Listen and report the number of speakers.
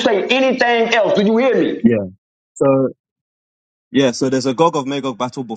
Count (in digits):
2